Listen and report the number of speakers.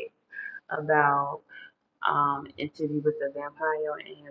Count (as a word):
one